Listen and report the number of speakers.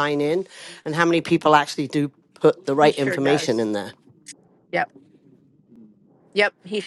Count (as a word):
two